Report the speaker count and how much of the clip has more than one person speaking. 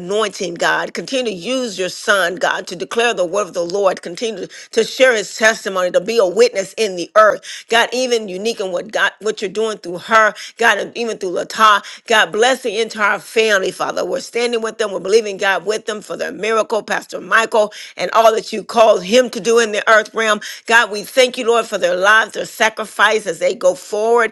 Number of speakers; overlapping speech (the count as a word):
one, no overlap